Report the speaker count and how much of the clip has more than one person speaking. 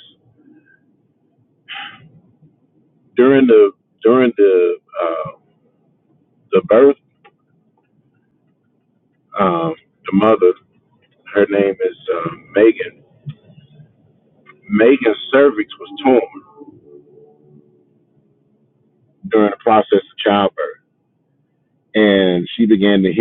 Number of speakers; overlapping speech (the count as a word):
one, no overlap